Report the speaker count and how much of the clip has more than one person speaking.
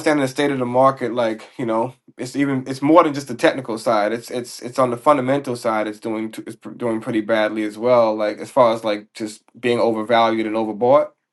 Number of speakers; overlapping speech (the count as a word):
one, no overlap